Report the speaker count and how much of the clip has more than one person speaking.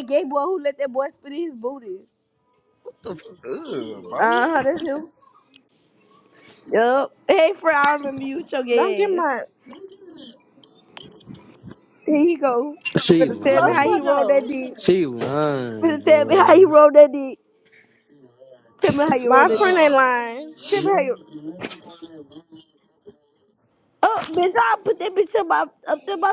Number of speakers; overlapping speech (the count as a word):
four, about 15%